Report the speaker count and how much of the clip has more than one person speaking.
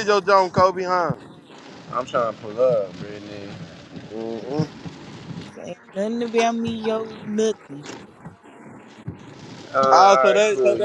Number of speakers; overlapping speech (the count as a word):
three, about 9%